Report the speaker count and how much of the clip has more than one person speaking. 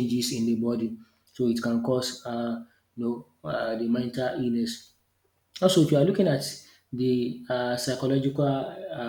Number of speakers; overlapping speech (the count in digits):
1, no overlap